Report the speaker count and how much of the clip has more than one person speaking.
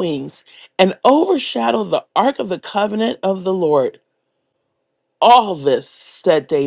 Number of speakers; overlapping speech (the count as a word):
one, no overlap